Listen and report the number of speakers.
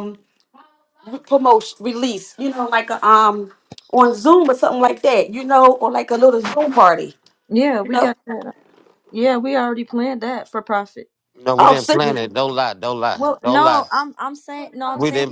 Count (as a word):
three